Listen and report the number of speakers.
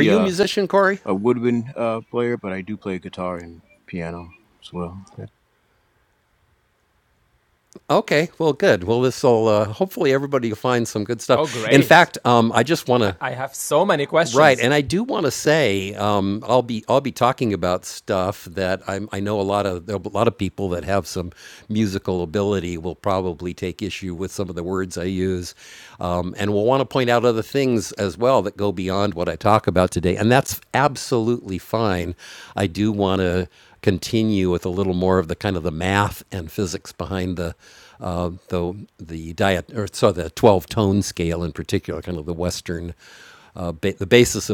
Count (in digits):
3